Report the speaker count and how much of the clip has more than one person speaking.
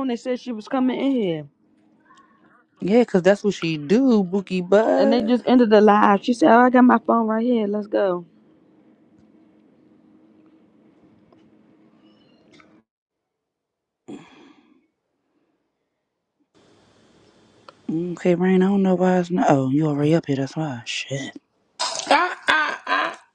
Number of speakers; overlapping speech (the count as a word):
three, about 2%